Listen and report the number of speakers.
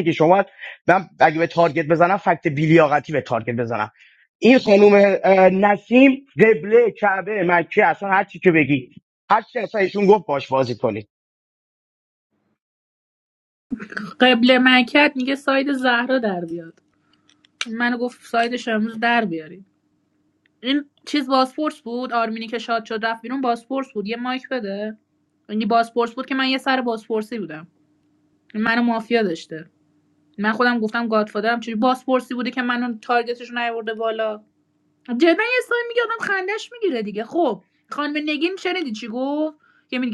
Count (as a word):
two